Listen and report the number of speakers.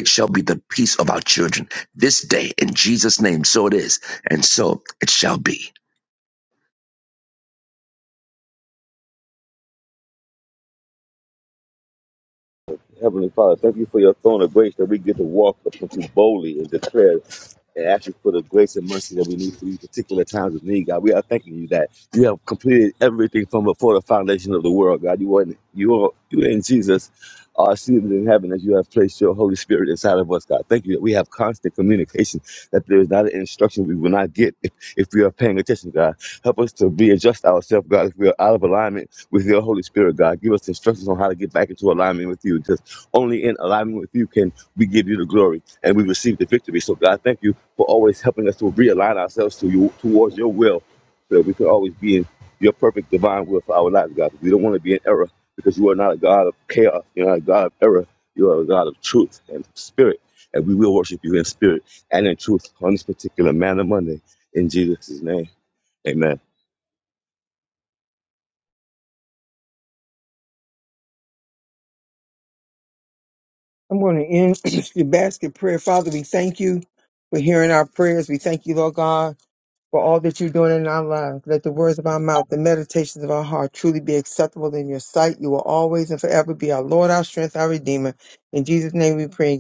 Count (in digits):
3